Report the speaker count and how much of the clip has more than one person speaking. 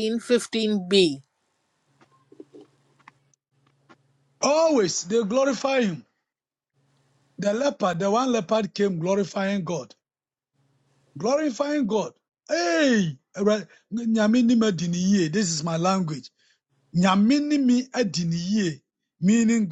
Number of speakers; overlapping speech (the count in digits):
2, no overlap